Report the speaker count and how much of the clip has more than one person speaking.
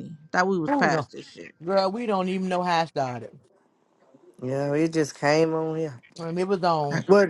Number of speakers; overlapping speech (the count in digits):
3, about 7%